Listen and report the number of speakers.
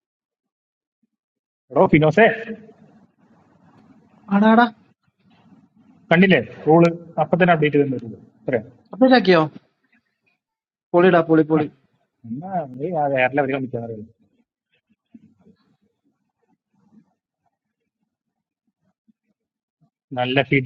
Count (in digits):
2